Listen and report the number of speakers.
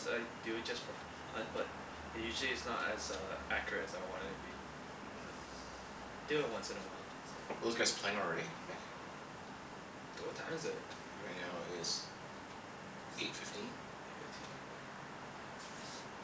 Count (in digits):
2